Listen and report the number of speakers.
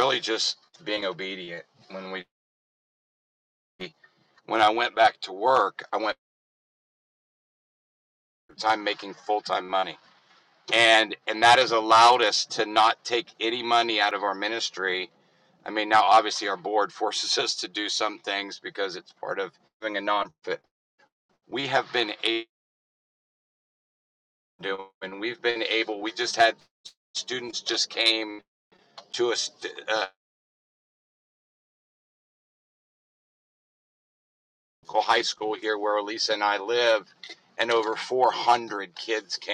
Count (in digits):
1